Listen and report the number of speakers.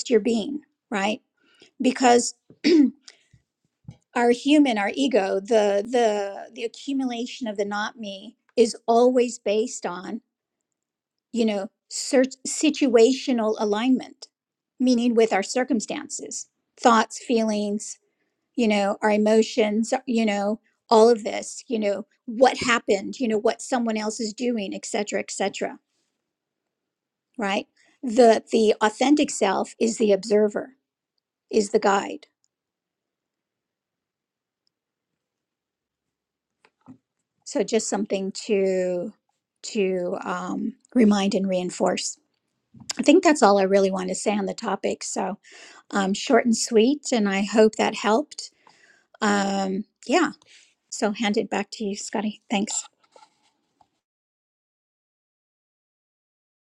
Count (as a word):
one